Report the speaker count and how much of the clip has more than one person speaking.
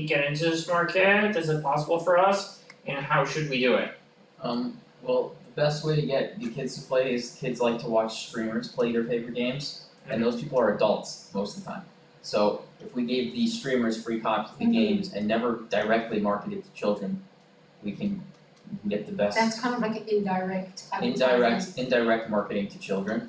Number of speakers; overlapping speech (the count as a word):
three, about 7%